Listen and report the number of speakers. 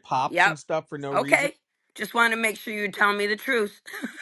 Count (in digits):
2